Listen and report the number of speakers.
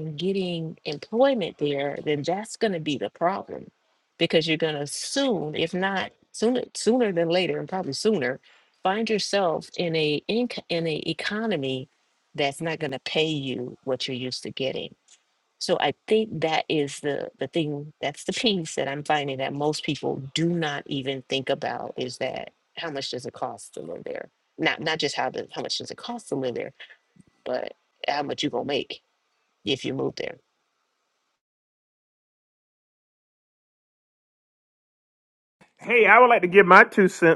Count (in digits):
2